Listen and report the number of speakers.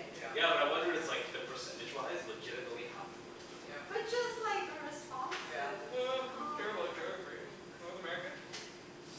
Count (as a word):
three